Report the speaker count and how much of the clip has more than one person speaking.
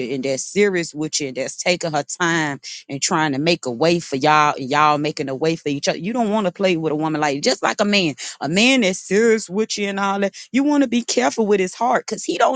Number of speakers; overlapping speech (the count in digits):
1, no overlap